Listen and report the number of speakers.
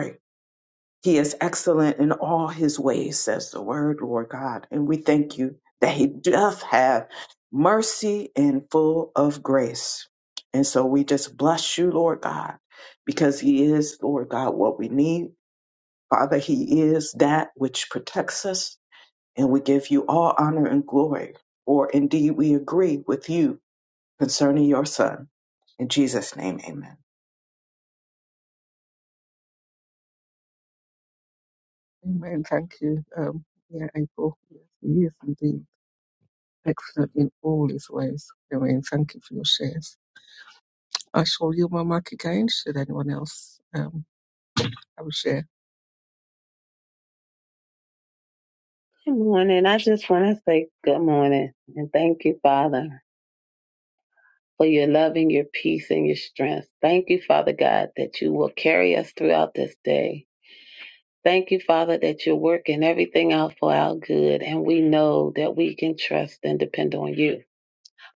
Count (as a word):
three